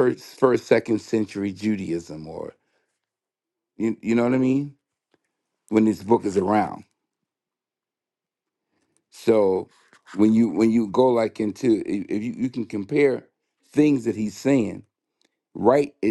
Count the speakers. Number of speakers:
1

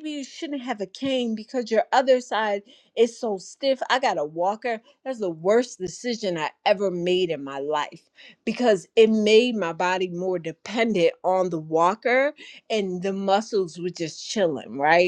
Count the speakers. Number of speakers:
1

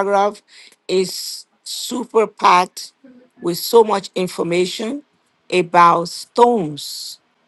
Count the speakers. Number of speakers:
1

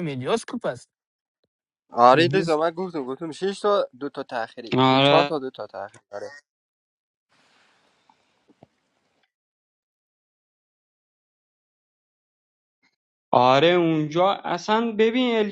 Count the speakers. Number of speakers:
3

